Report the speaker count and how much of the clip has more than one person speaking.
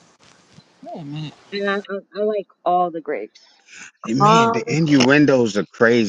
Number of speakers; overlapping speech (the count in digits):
3, about 10%